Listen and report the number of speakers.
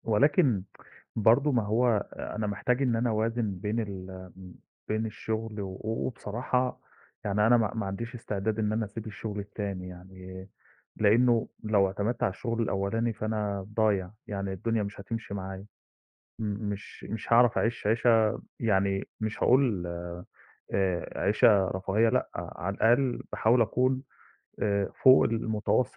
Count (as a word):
one